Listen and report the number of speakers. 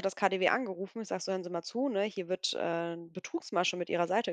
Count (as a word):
one